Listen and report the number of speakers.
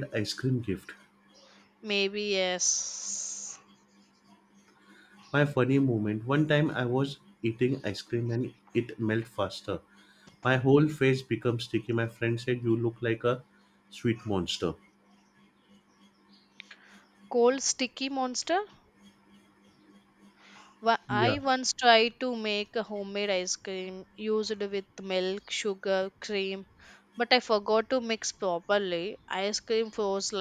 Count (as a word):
two